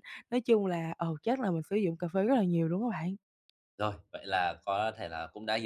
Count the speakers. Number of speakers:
2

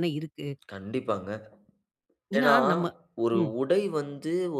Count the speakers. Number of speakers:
2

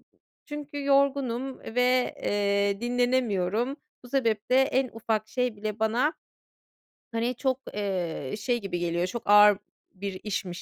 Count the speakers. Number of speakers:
1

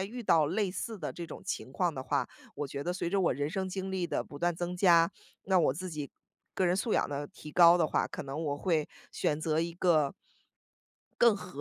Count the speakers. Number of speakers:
1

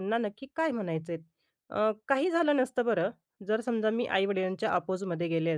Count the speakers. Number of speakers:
1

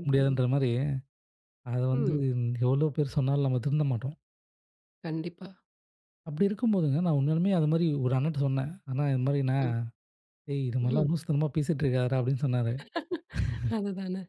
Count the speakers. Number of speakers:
2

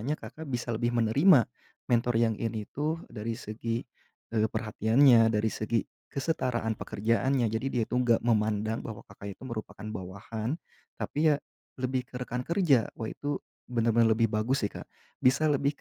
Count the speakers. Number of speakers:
1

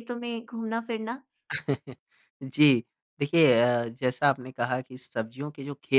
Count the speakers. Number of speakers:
2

